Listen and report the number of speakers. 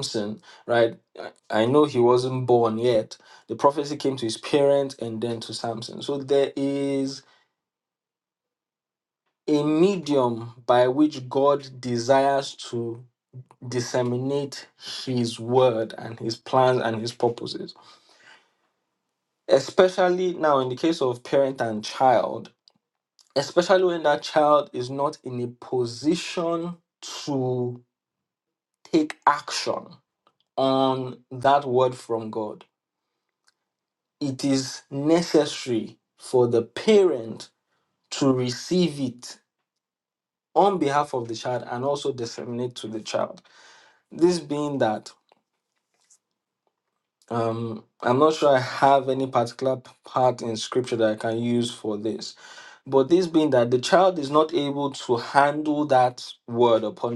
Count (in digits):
1